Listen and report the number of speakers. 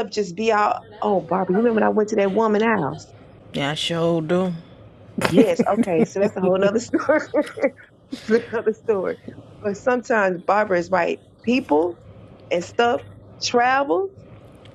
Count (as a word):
two